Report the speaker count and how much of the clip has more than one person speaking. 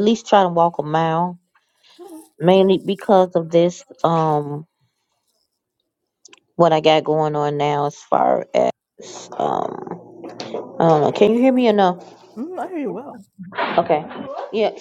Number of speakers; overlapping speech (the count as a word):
two, no overlap